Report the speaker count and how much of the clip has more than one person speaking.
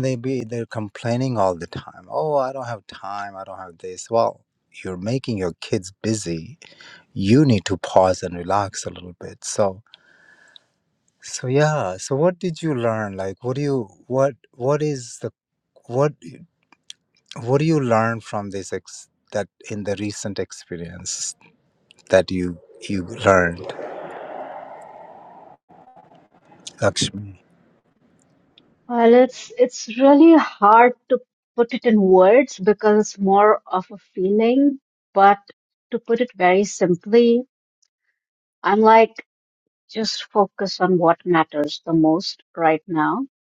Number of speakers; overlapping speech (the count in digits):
2, no overlap